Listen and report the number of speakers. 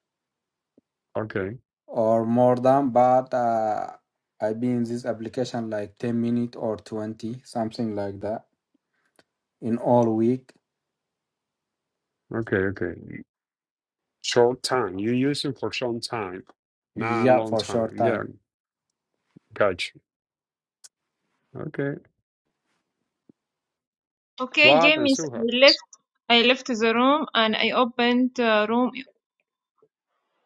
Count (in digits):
3